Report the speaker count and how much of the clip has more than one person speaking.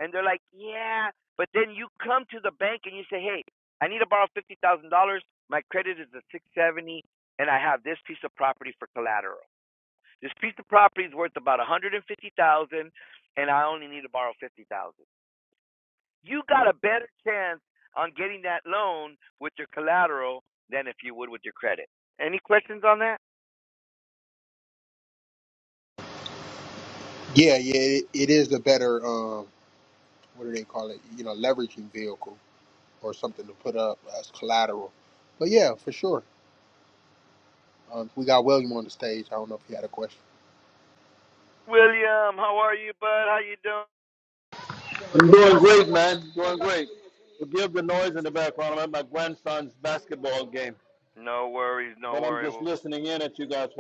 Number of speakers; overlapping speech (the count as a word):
three, about 1%